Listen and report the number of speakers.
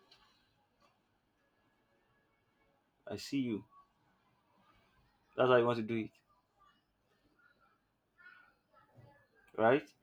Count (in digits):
1